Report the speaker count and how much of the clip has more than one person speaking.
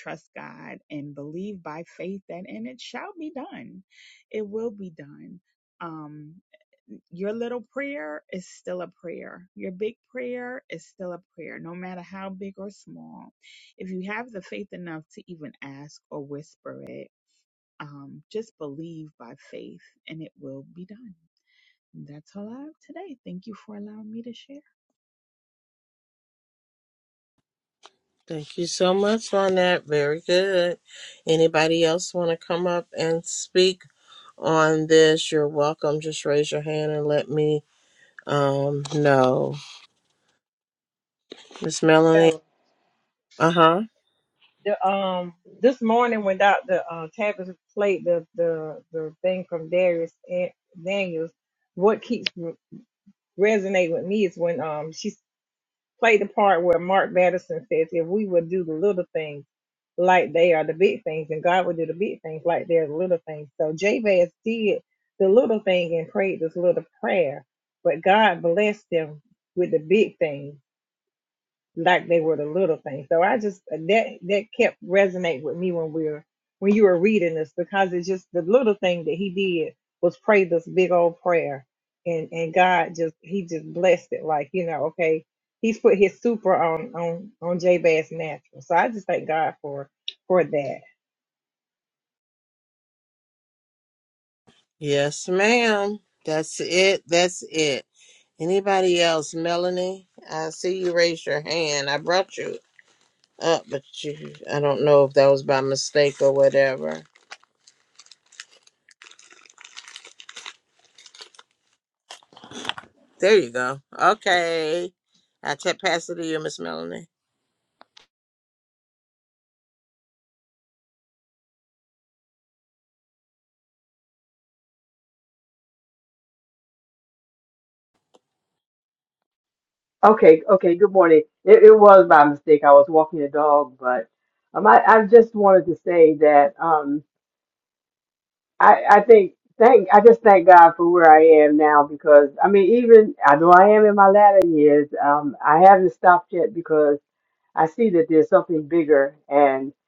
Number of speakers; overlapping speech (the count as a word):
four, no overlap